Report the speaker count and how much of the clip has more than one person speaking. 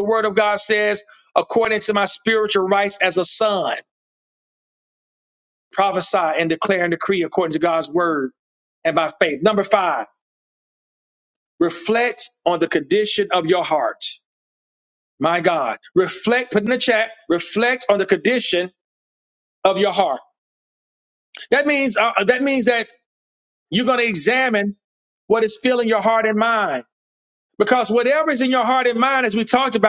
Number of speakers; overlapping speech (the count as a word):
one, no overlap